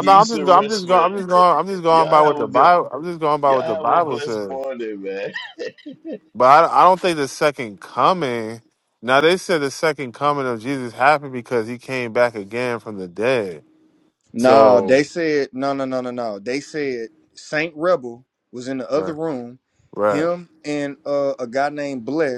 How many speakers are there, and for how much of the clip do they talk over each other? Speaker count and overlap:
three, about 18%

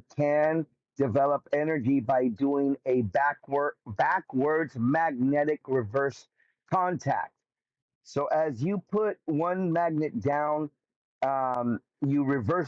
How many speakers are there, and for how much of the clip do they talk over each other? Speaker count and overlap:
one, no overlap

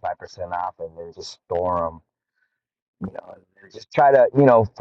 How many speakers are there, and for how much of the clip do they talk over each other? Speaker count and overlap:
one, no overlap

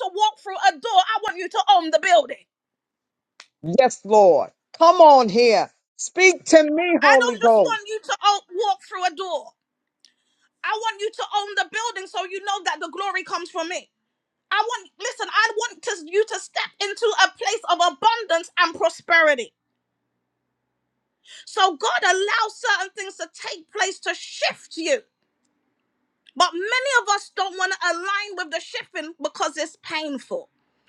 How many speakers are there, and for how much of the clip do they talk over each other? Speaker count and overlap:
two, about 2%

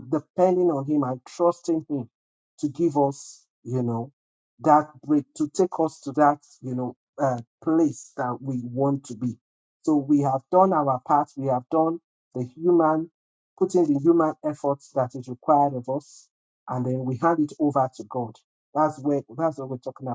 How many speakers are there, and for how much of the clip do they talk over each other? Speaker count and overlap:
one, no overlap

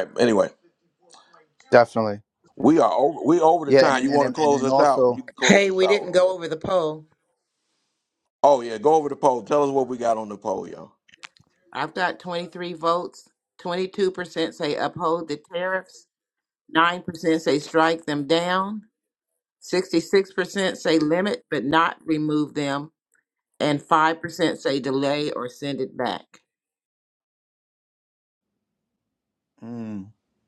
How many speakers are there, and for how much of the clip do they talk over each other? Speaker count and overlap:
three, about 8%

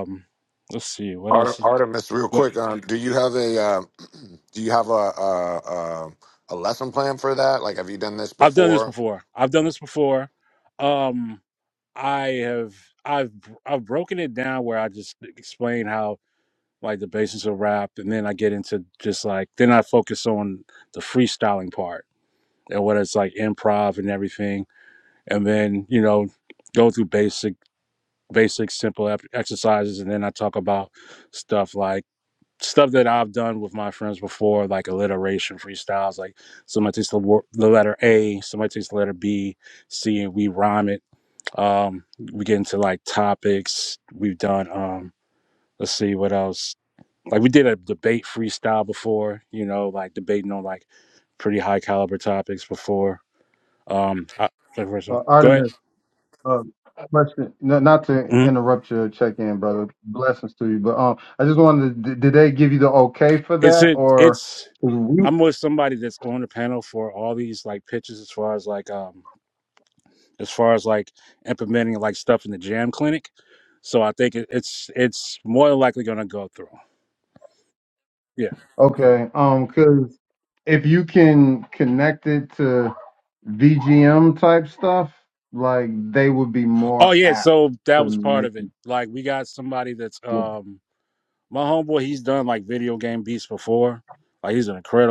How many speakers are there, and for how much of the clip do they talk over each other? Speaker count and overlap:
three, about 4%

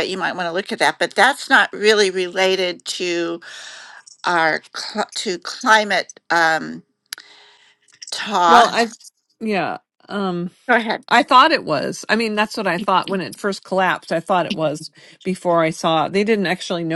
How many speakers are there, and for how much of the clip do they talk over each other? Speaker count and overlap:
two, about 1%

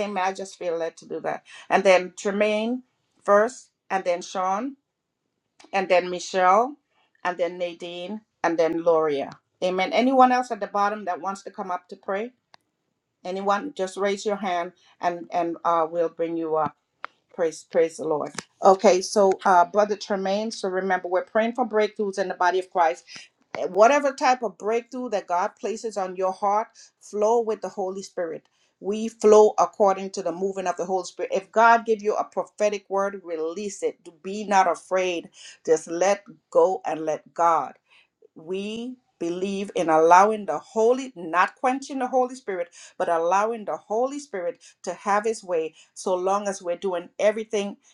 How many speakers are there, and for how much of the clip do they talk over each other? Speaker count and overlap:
one, no overlap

